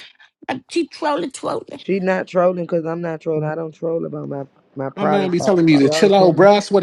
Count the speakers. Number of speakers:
three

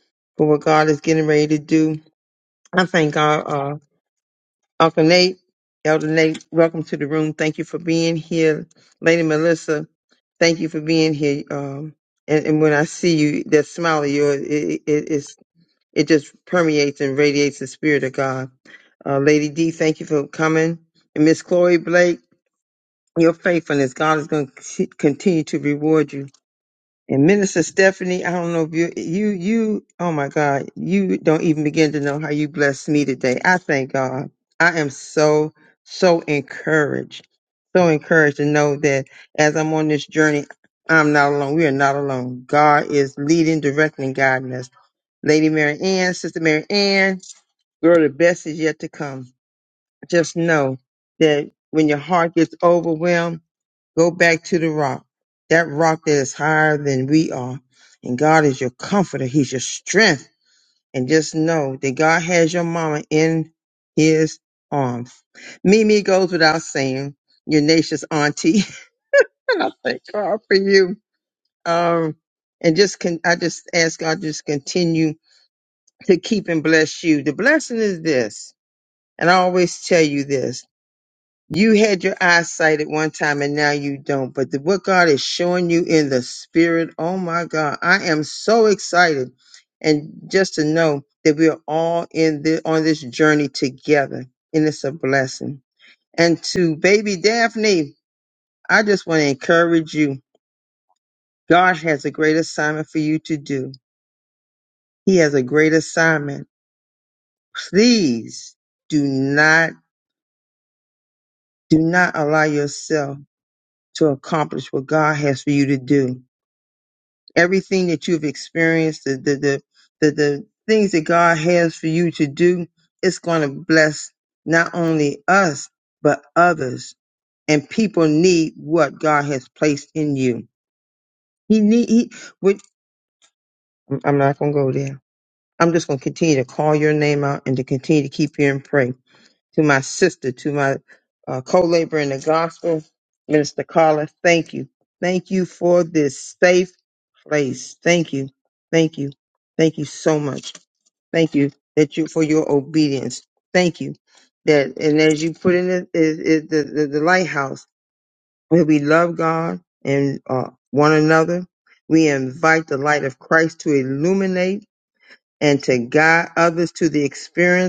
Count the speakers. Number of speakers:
one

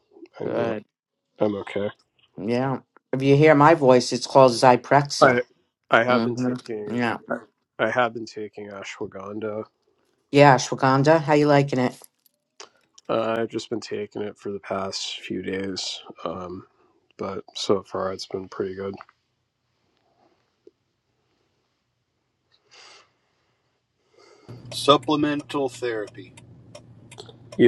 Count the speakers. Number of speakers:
three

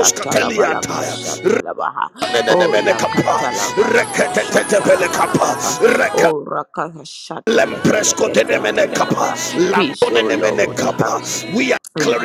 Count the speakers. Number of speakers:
two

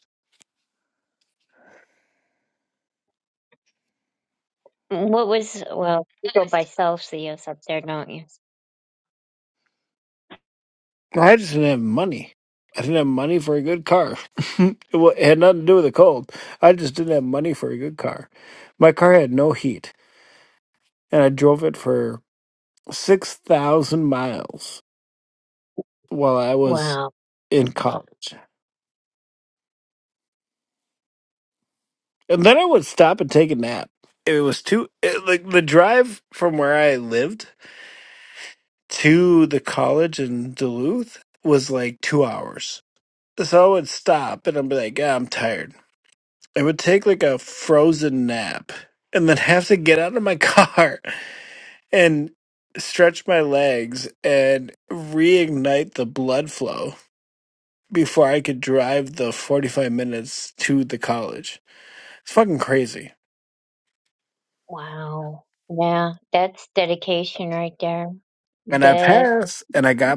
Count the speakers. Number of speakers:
two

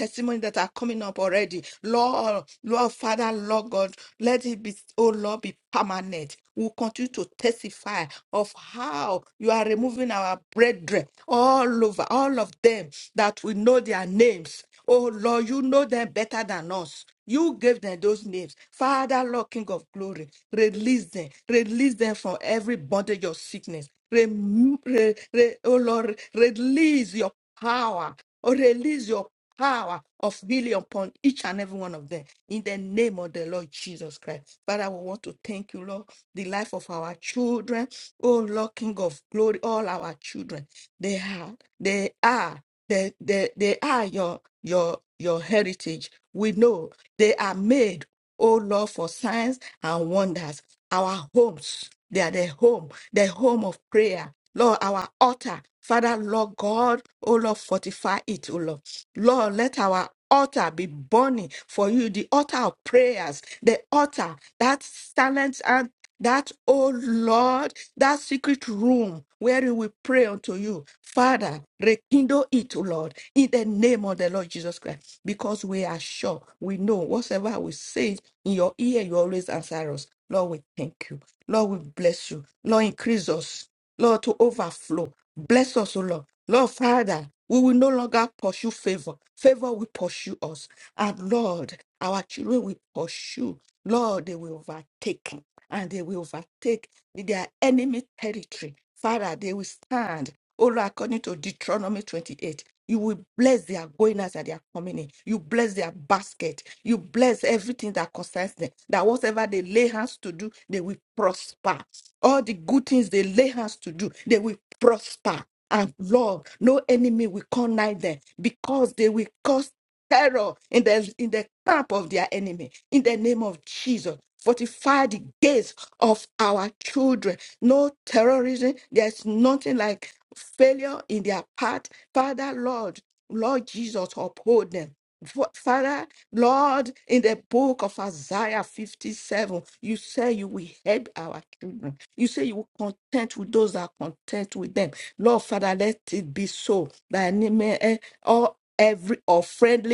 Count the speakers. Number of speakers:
one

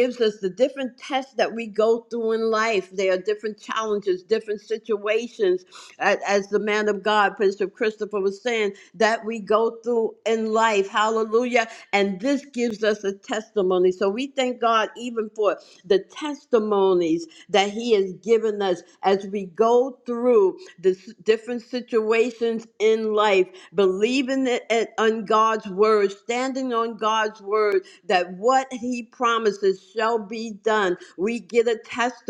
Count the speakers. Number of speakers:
one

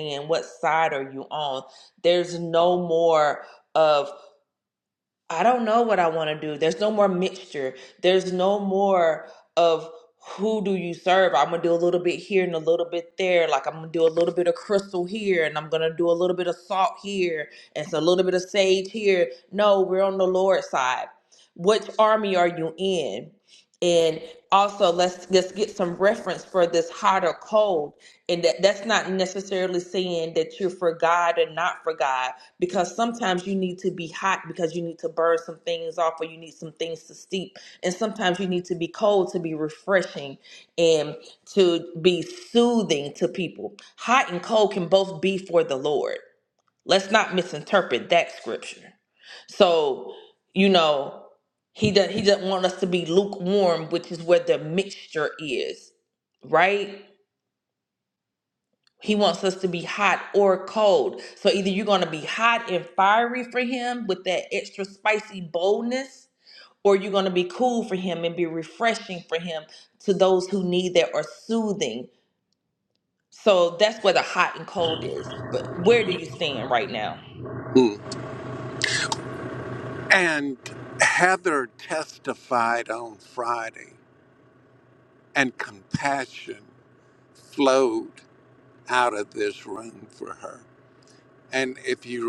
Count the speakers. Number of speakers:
two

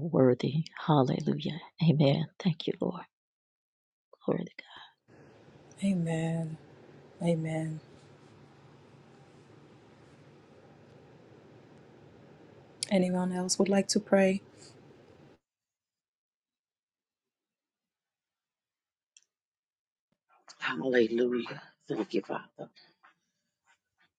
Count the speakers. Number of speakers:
three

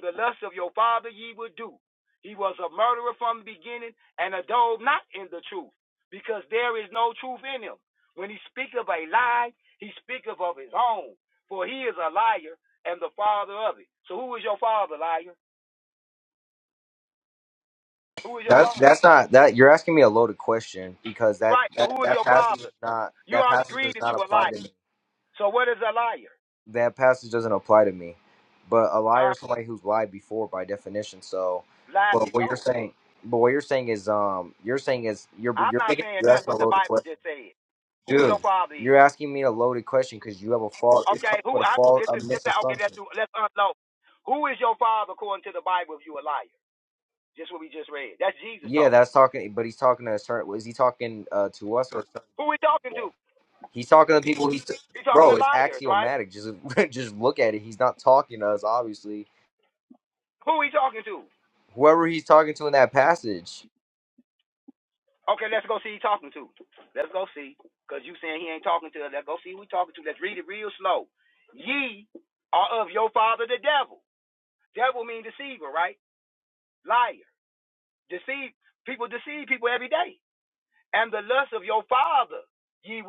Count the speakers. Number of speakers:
two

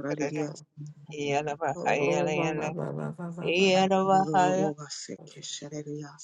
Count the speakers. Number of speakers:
three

